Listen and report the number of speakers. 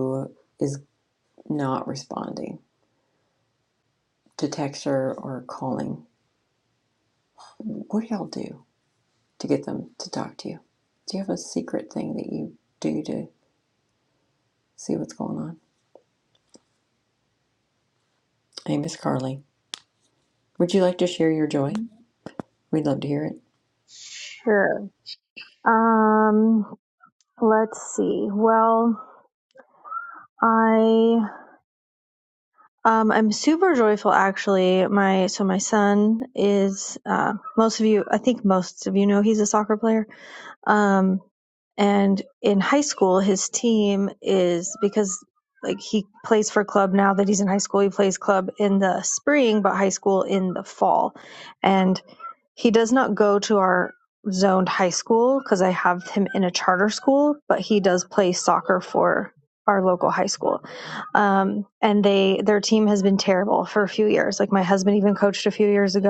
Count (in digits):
2